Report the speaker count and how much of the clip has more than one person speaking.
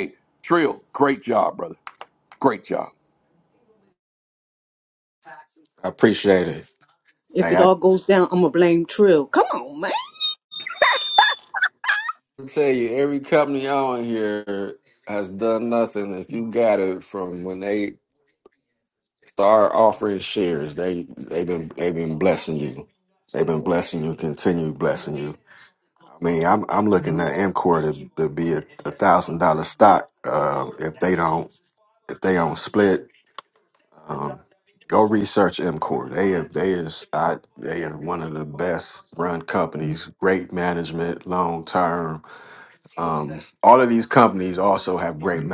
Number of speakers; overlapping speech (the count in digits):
3, about 1%